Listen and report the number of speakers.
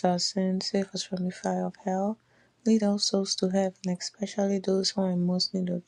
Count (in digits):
1